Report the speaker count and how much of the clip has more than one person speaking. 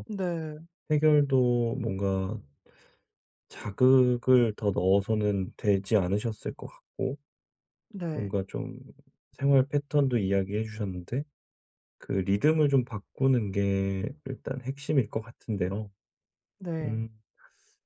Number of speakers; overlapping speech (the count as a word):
two, about 2%